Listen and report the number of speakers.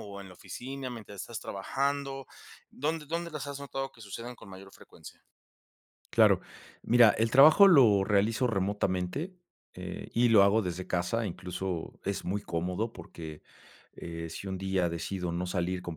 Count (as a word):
two